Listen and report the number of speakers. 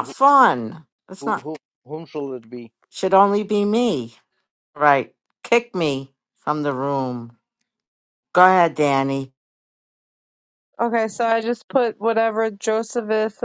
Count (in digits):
3